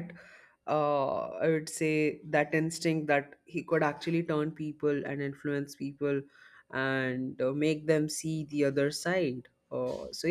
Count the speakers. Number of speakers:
1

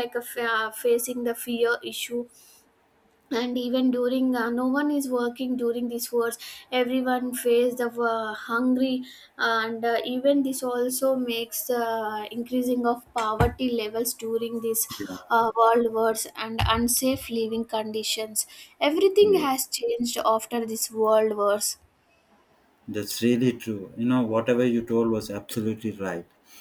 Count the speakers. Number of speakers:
2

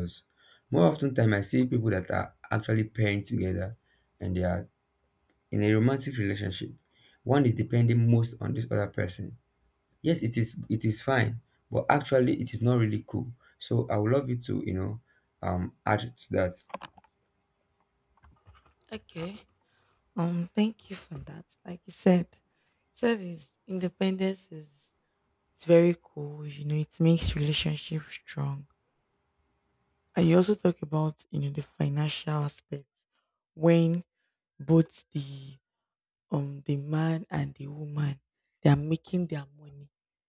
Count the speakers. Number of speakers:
2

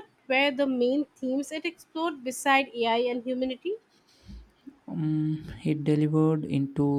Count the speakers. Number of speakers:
2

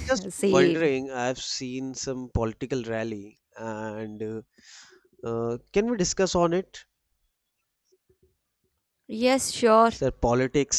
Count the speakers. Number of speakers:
2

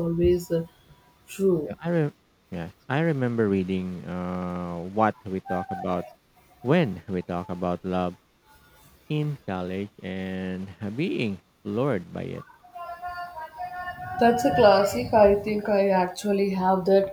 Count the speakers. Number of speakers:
2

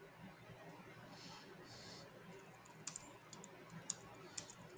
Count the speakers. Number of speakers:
0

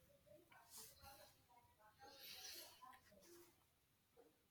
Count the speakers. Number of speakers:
0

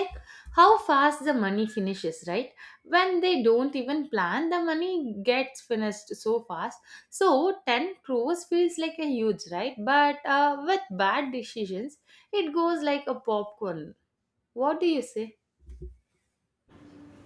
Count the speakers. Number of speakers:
1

